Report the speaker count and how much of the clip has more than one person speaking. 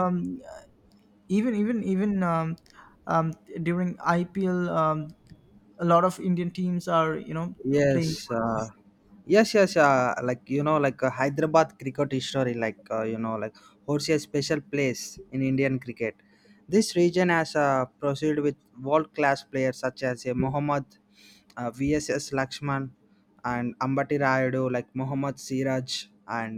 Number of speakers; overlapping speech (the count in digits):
2, about 1%